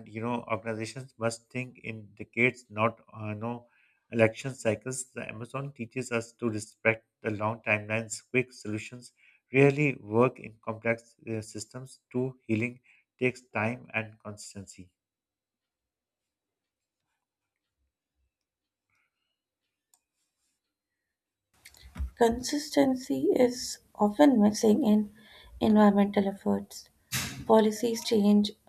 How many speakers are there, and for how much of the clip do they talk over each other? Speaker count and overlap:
2, no overlap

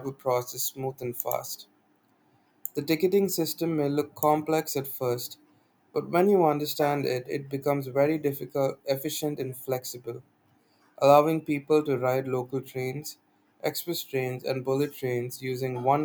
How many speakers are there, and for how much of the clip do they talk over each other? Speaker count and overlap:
1, no overlap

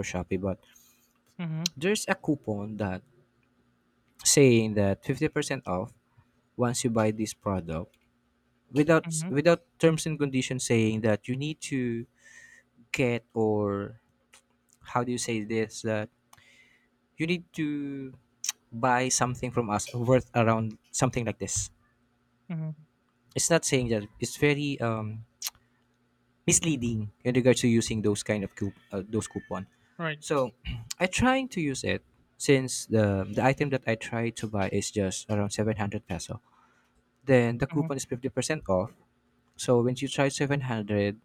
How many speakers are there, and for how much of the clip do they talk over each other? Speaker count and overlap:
2, about 1%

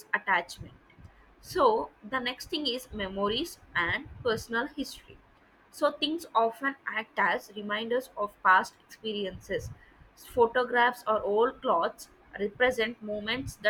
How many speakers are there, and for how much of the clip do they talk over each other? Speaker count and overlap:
1, no overlap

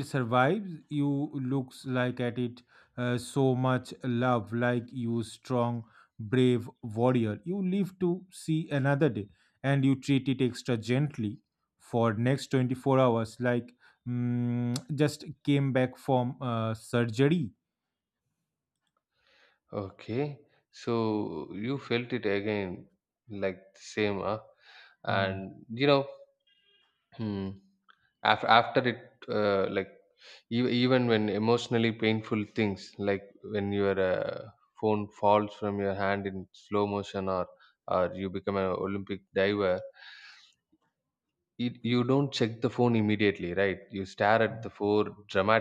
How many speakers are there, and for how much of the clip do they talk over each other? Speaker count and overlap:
2, about 1%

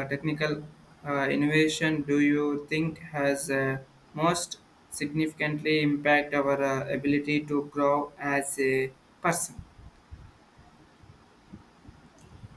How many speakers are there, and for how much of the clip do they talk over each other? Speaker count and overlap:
1, no overlap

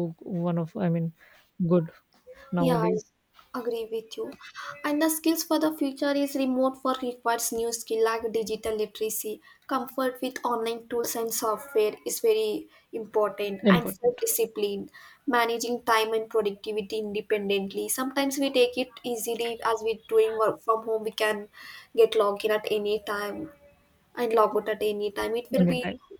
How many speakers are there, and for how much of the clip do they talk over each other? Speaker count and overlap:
2, about 6%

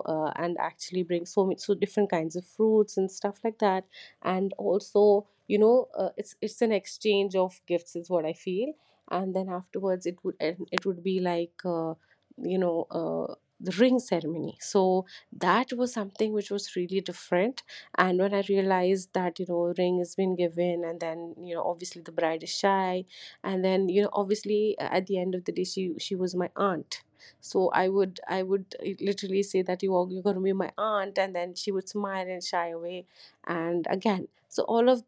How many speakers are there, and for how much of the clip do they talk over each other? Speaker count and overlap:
1, no overlap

